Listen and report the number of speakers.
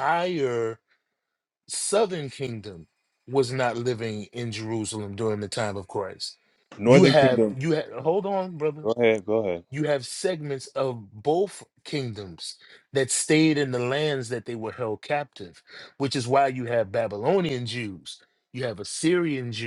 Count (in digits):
2